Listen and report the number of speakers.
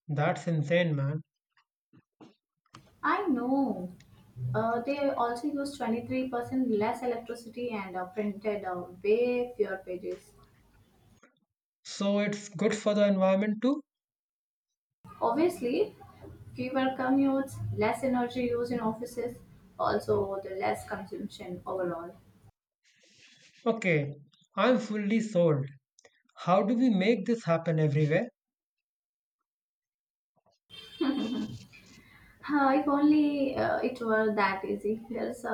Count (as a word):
two